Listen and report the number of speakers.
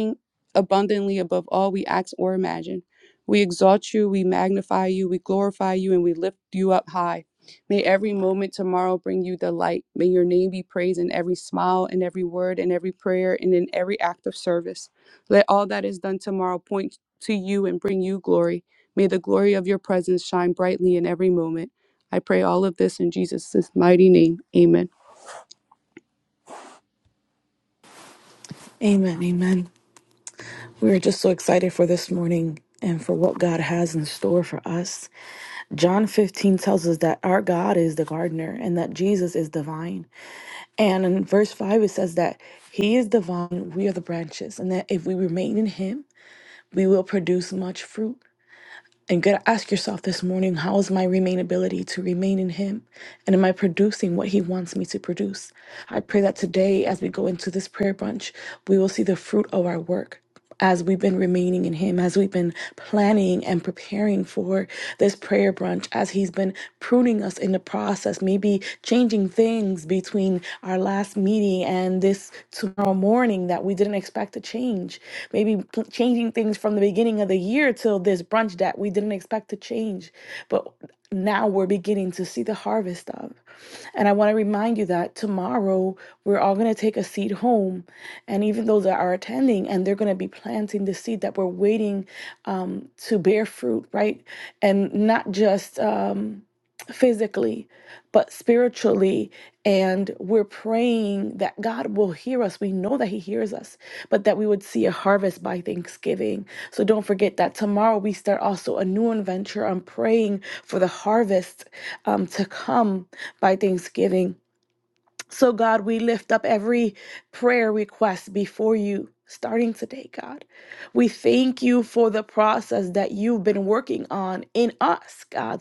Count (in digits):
2